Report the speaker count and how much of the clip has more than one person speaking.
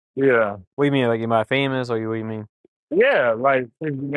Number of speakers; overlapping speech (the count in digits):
2, no overlap